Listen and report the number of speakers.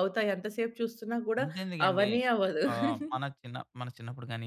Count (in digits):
2